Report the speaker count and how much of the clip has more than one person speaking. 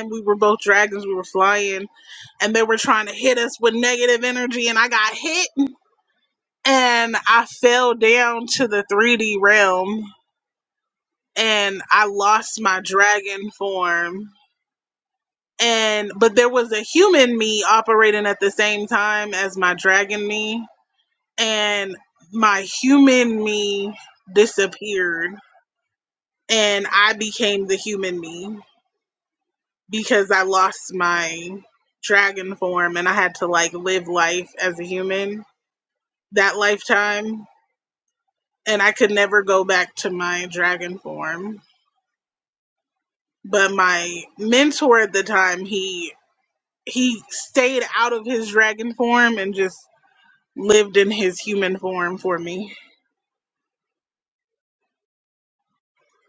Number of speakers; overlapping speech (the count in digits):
1, no overlap